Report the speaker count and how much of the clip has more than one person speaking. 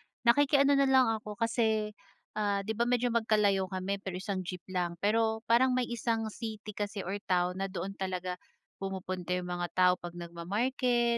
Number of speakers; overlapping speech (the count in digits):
1, no overlap